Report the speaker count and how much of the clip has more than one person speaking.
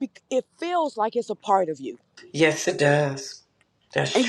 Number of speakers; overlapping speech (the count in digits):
2, about 3%